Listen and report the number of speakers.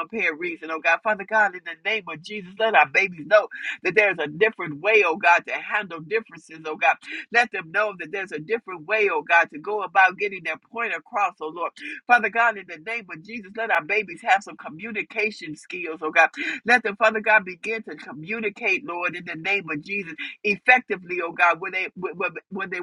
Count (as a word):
one